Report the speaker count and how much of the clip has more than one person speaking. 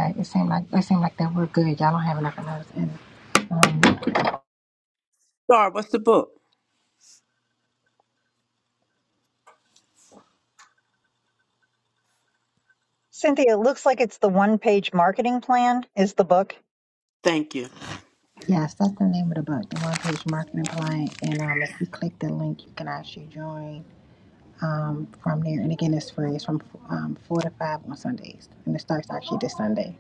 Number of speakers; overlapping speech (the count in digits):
3, no overlap